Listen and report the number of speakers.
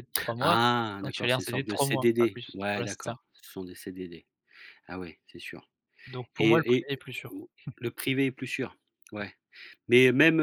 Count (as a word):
two